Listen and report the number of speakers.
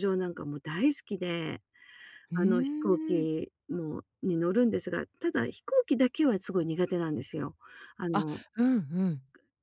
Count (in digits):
2